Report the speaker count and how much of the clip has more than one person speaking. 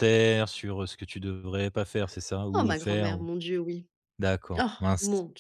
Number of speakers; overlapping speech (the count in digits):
2, about 22%